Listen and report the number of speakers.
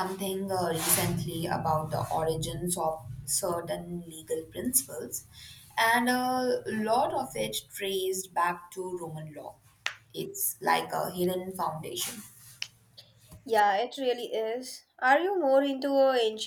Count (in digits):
2